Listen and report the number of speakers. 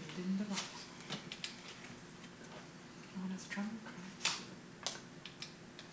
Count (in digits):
0